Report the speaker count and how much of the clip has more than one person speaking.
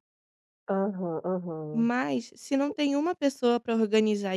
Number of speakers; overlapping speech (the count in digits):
2, about 2%